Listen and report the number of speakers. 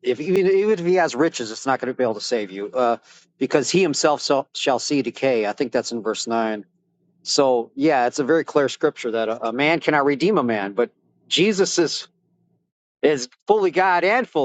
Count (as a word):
one